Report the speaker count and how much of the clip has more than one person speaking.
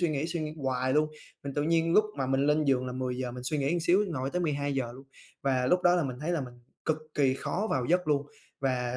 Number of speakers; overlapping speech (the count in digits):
1, no overlap